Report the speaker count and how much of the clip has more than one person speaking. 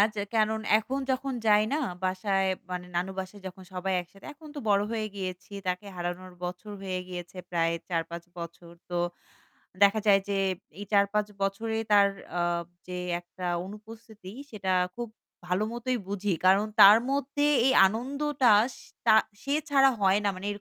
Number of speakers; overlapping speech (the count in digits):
1, no overlap